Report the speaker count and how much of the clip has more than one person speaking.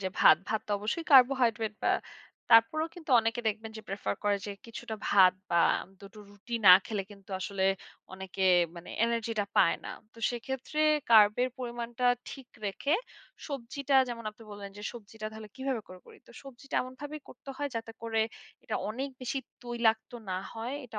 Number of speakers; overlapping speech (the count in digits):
1, no overlap